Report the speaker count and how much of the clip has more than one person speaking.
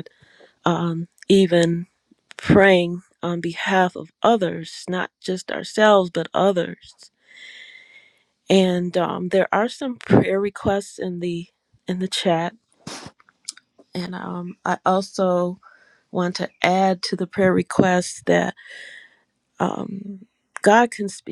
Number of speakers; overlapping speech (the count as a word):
one, no overlap